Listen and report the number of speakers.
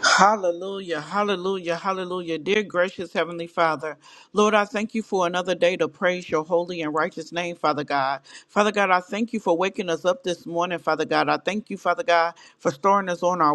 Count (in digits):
1